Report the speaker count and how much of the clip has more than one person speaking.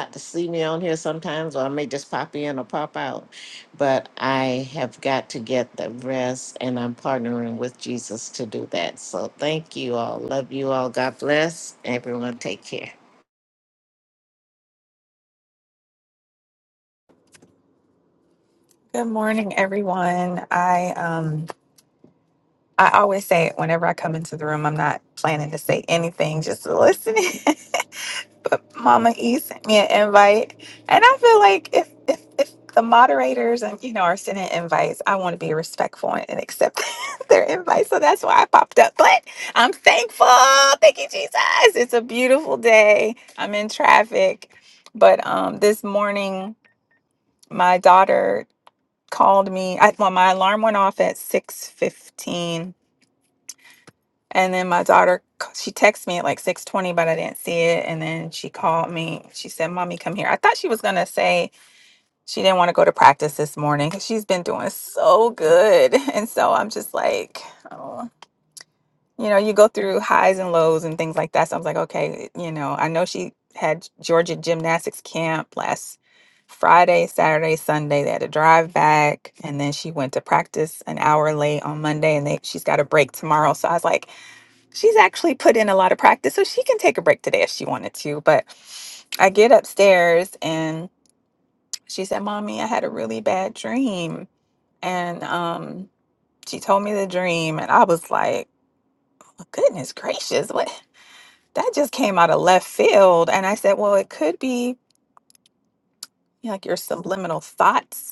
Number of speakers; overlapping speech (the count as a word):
two, no overlap